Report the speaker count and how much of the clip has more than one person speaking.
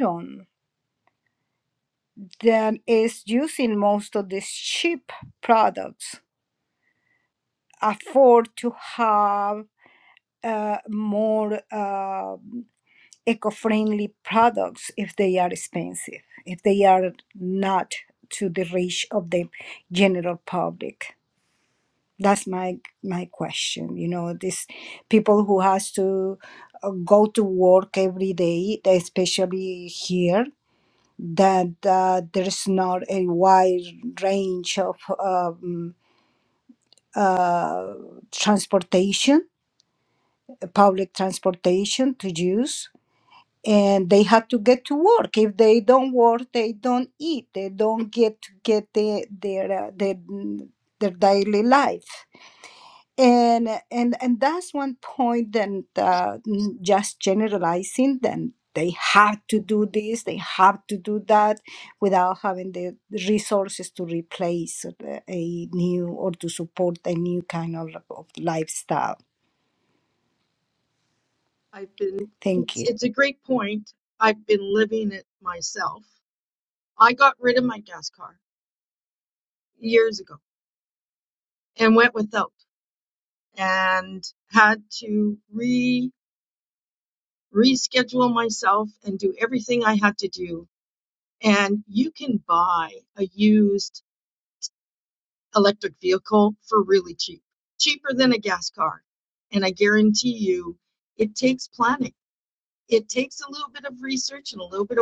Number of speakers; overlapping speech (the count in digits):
2, under 1%